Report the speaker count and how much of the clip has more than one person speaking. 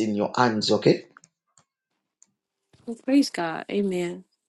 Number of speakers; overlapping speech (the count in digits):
2, no overlap